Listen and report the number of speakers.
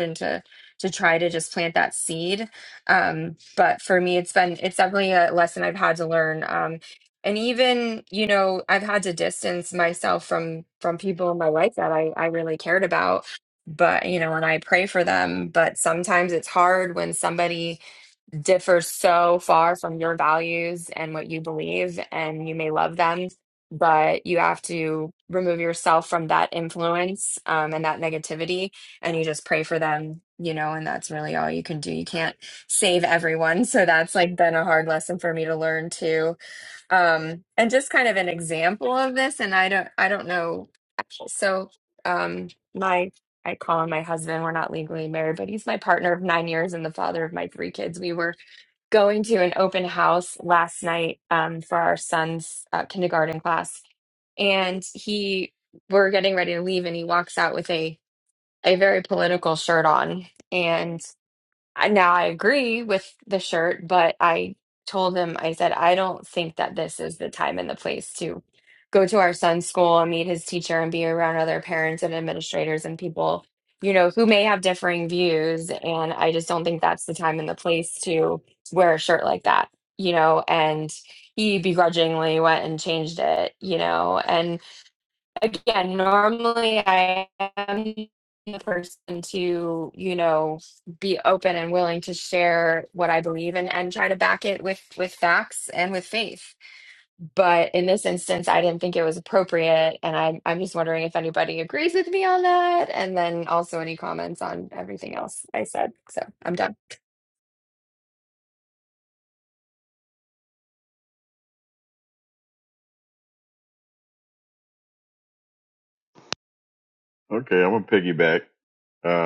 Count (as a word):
two